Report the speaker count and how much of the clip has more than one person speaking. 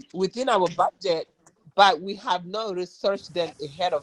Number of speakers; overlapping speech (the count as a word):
one, no overlap